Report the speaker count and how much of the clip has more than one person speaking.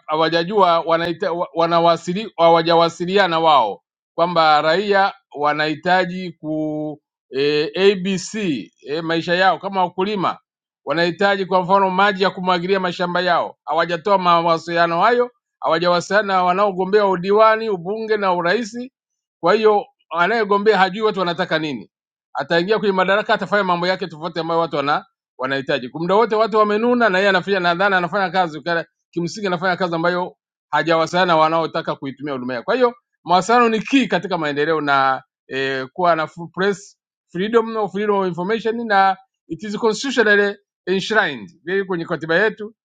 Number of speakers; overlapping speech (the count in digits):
1, no overlap